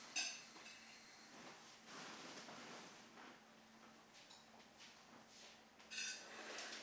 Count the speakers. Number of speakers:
0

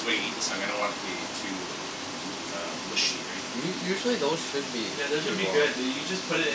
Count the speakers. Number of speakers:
3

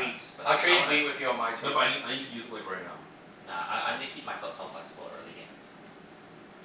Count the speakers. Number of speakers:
3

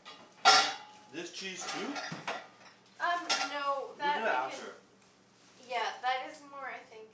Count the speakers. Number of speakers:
2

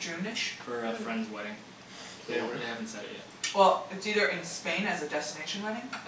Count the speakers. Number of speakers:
2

